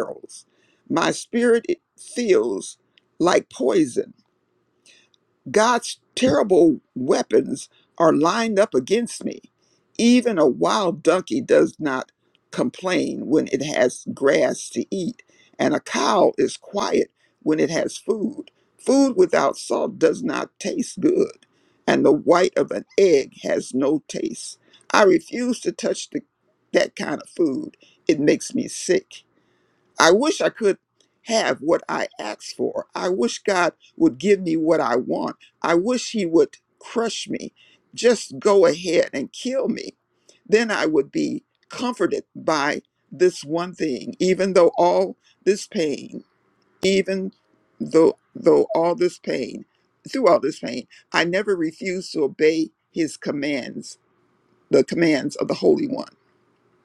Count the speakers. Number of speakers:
one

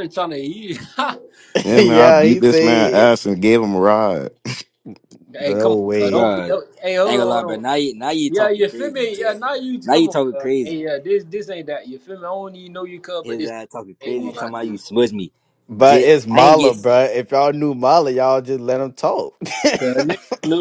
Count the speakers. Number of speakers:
four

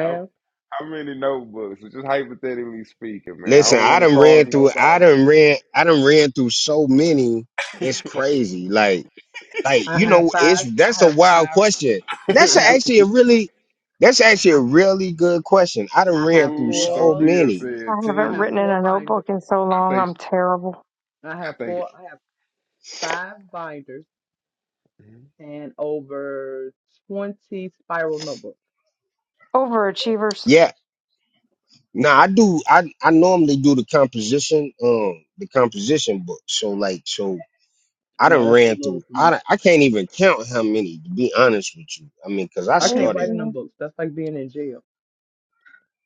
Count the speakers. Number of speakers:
four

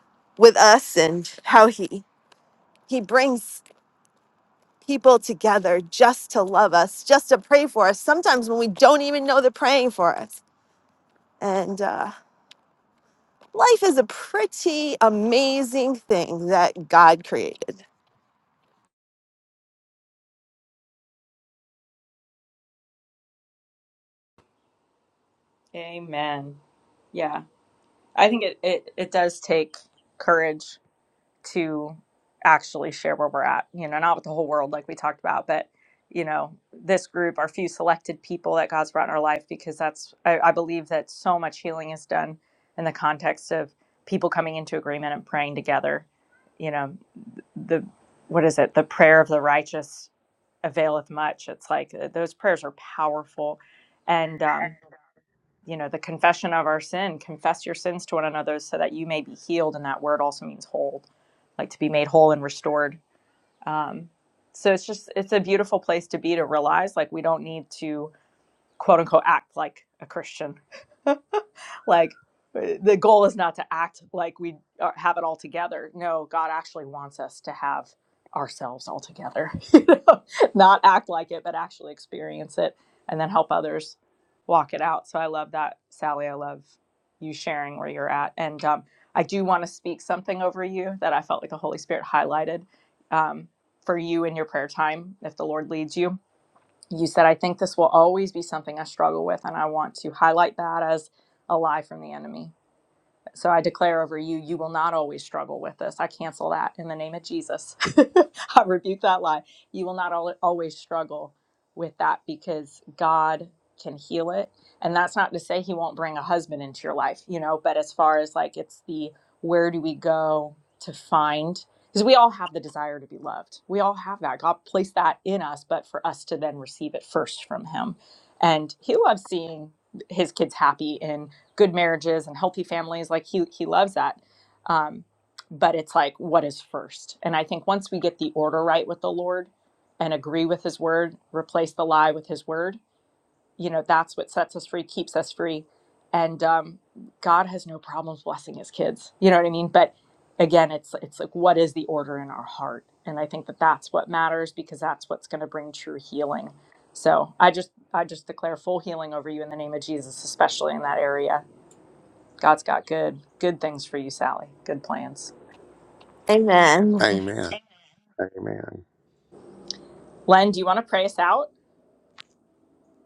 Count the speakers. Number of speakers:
three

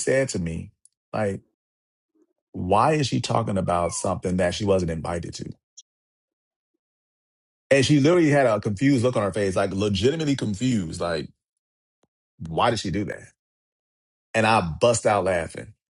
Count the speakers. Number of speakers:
one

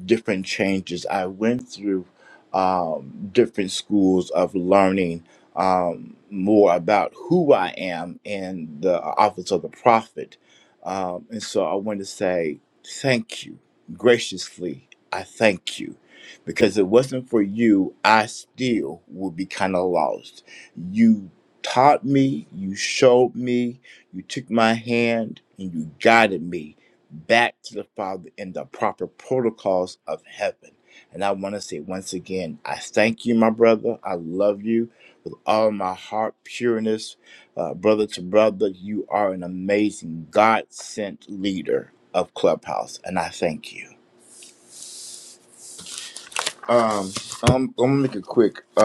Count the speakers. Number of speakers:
one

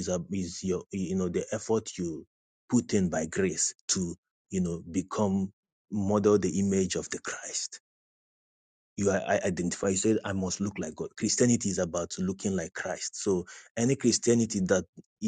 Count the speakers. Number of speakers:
one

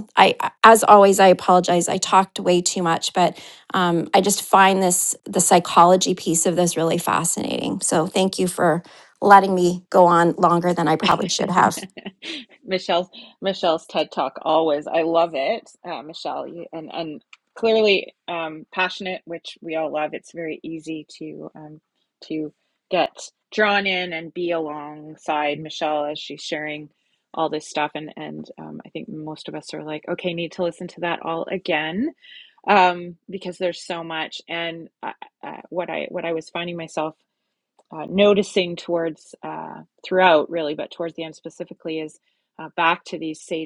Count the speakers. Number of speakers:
two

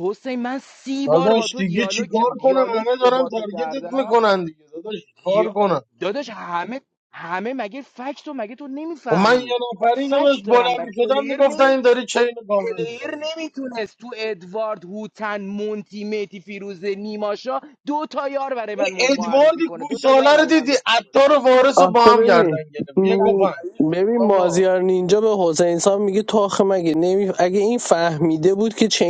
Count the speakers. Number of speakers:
three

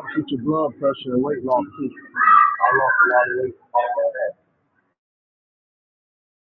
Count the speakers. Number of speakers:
one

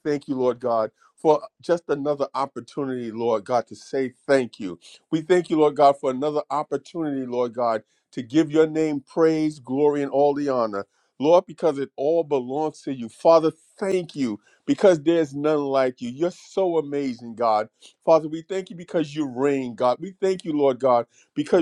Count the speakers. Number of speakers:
one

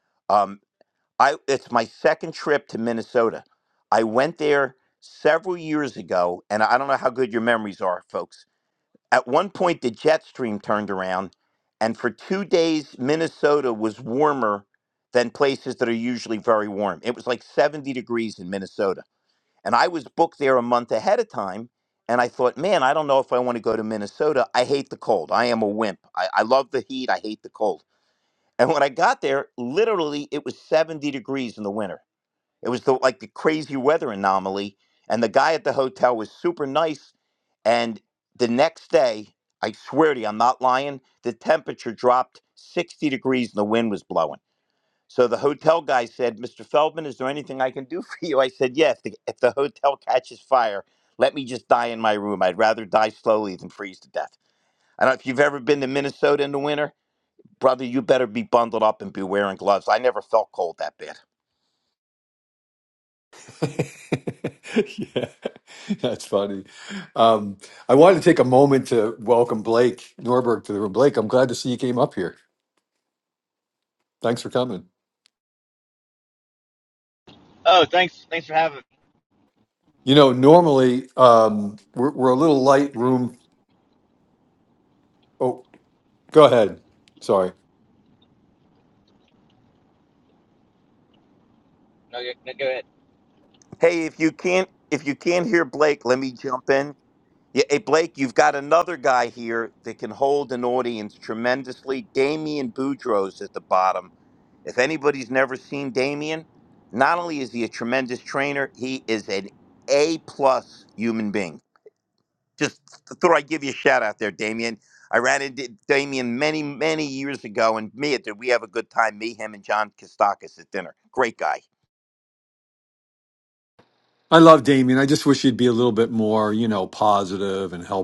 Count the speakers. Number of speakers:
three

